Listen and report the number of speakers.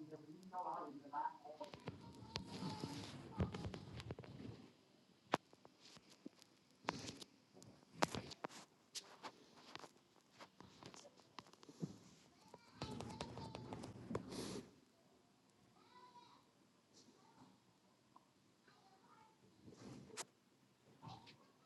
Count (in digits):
0